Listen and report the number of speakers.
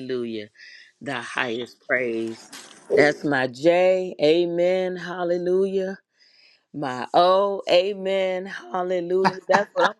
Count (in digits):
1